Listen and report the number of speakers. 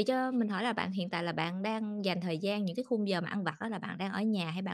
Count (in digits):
1